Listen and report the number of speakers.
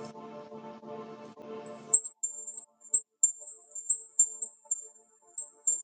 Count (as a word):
zero